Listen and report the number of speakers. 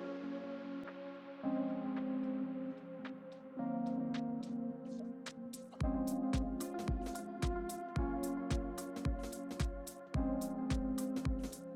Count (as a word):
zero